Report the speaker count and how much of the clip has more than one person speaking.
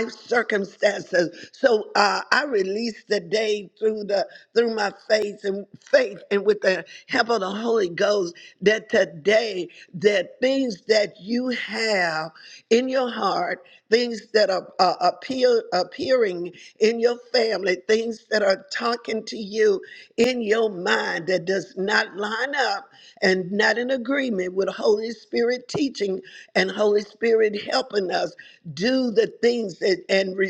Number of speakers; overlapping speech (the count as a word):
one, no overlap